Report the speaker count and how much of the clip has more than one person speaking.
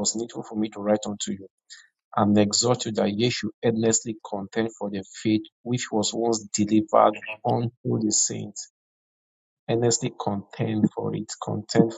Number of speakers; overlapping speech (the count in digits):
1, no overlap